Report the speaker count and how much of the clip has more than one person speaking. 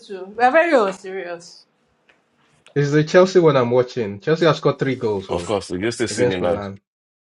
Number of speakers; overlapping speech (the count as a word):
three, about 9%